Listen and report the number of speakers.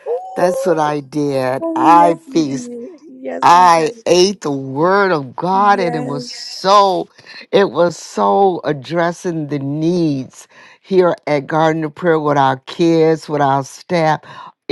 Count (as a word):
two